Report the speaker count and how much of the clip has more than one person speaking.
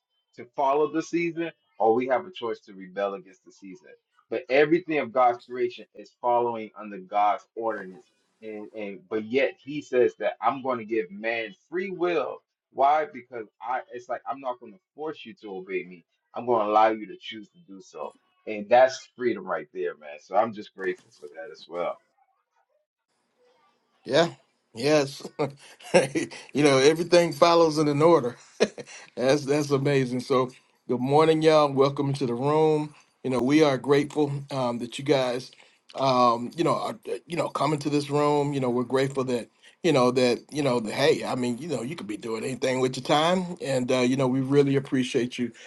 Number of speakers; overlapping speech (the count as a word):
two, no overlap